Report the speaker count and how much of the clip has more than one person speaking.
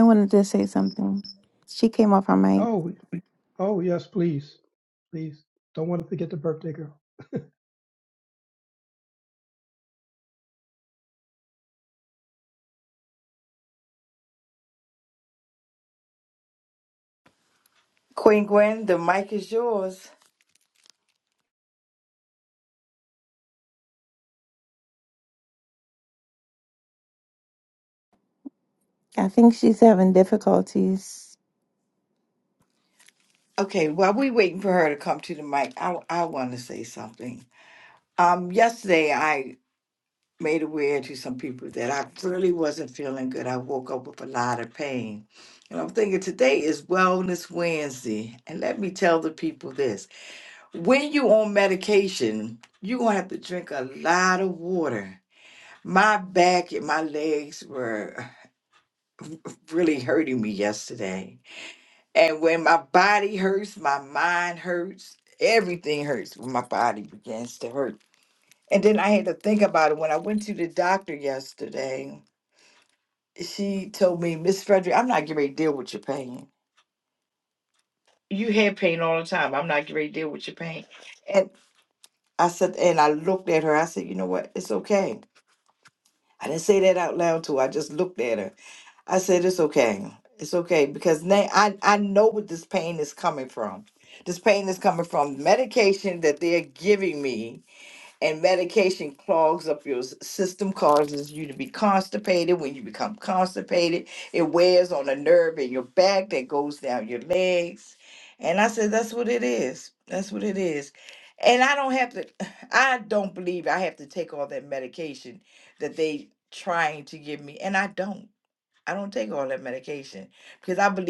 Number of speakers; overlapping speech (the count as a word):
three, under 1%